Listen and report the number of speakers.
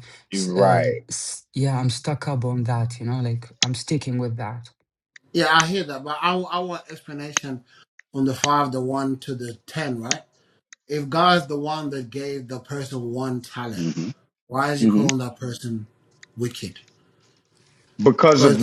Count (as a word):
three